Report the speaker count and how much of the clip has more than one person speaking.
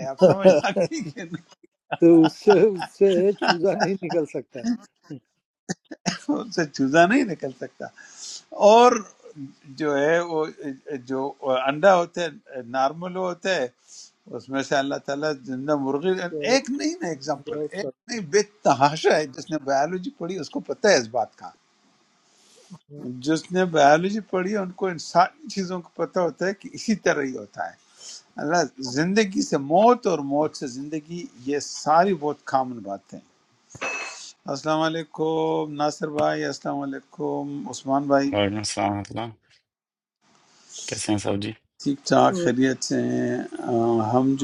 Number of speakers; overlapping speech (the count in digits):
3, about 1%